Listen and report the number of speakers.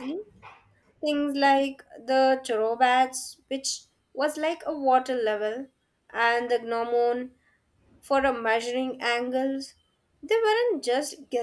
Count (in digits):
1